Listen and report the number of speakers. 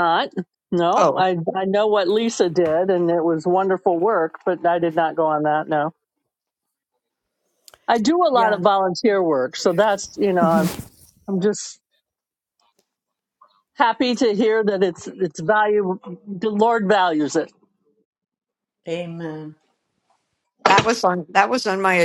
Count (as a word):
three